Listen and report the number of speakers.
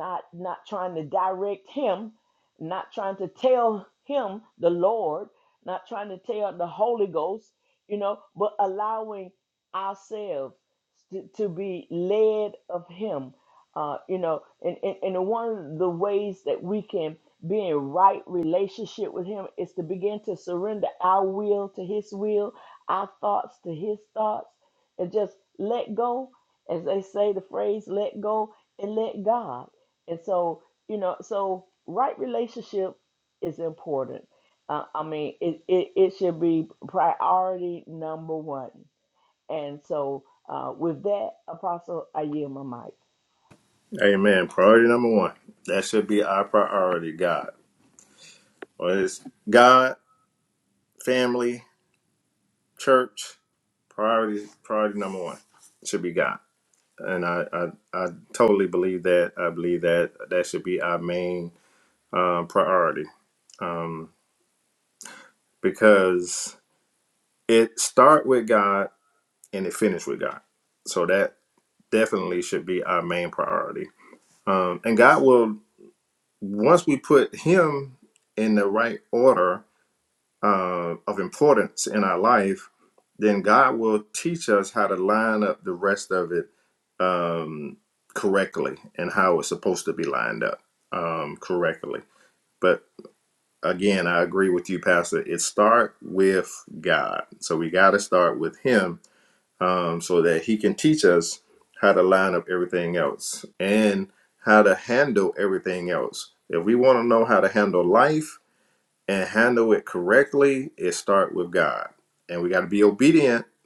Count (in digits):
2